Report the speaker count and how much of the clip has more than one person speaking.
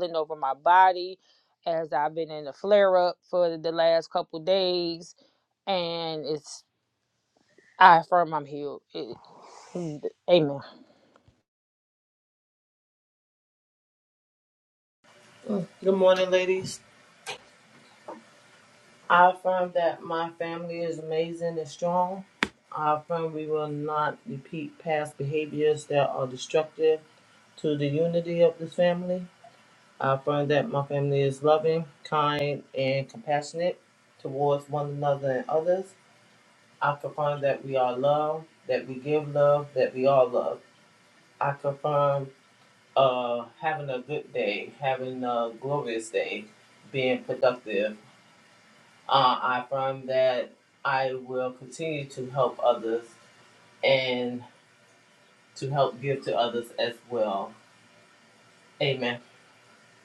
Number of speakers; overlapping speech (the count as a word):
two, no overlap